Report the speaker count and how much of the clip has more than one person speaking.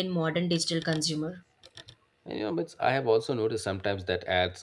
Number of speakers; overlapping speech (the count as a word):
two, no overlap